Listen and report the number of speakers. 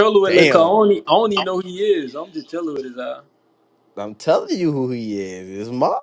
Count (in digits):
2